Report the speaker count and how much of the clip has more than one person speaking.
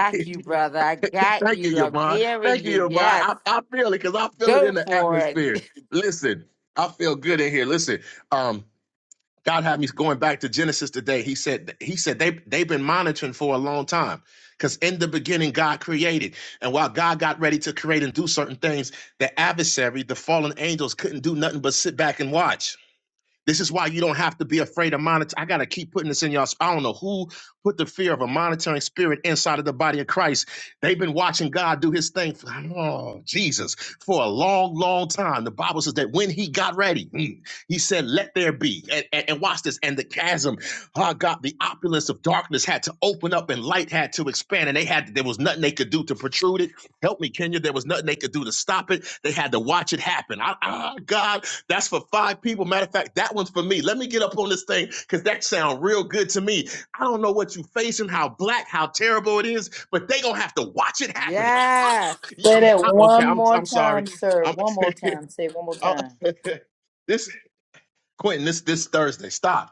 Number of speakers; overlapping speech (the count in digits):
3, about 7%